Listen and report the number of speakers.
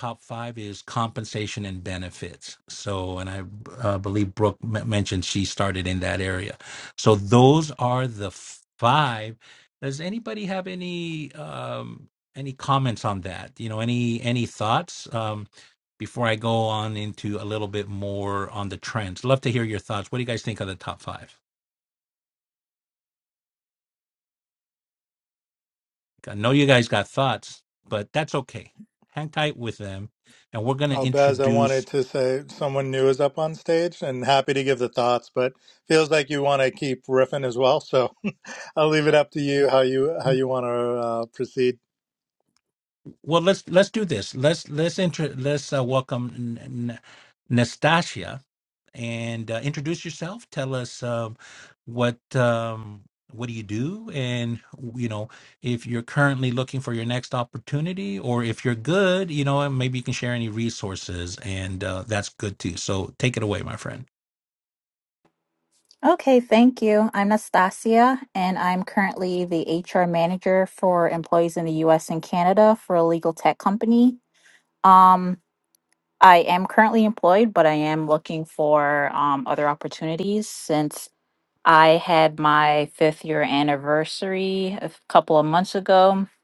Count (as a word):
three